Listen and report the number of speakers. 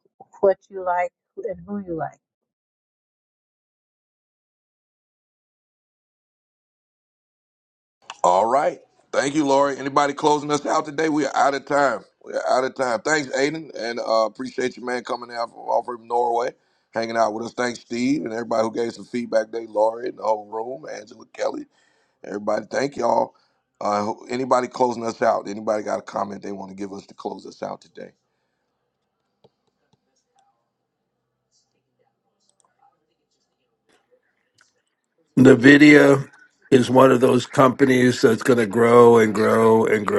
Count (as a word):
three